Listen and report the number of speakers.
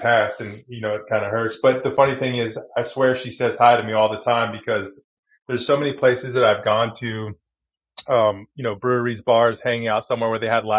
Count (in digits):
1